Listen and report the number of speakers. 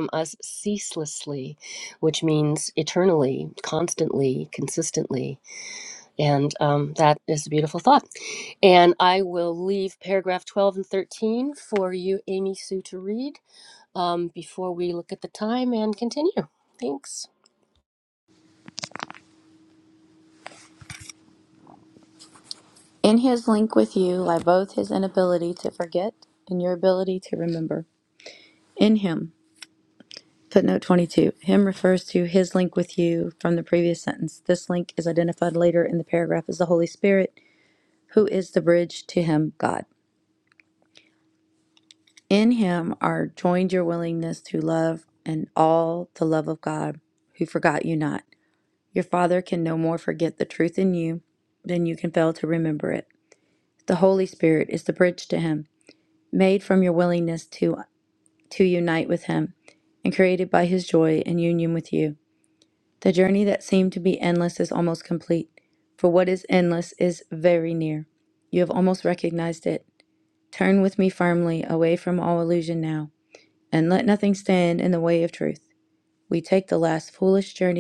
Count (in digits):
2